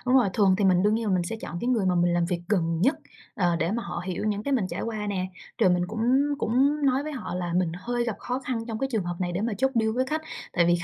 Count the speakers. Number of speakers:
one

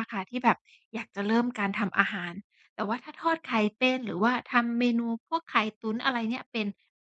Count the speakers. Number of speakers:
one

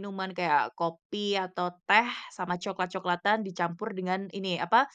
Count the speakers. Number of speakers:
one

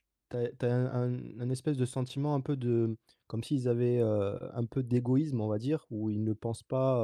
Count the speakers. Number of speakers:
one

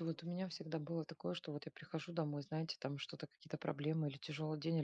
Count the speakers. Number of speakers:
one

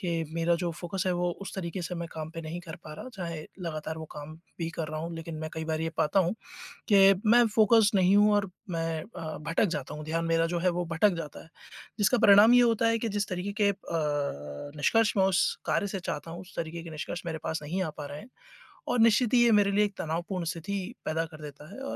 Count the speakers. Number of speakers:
one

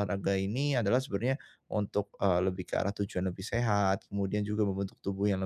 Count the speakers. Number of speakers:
one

